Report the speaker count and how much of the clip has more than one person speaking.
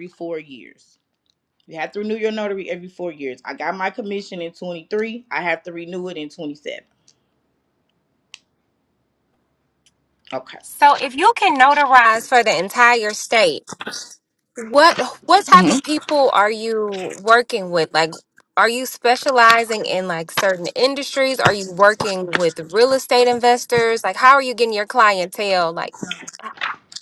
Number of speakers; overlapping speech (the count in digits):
2, about 1%